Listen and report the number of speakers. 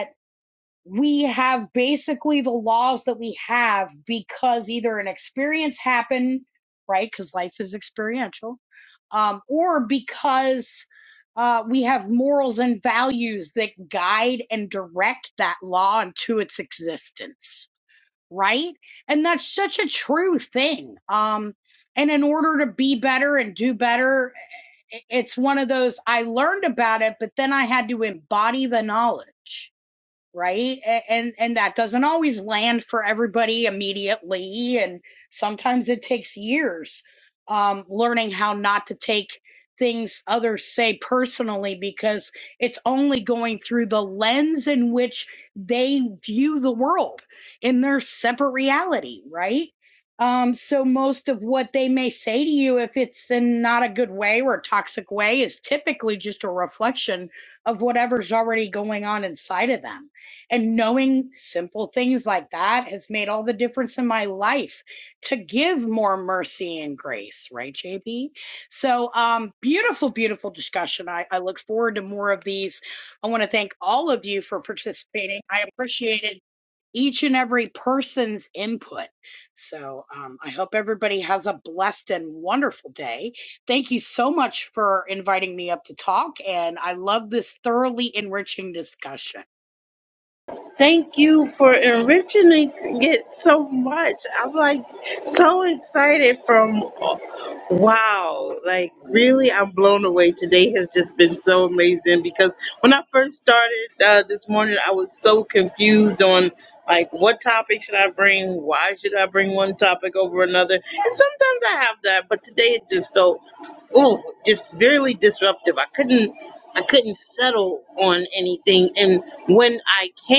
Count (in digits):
2